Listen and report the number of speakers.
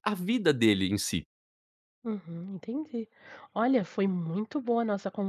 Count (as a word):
two